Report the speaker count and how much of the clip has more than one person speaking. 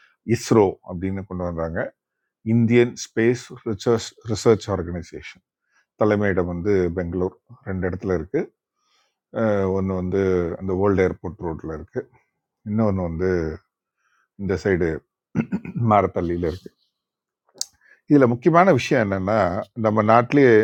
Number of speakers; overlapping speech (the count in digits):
1, no overlap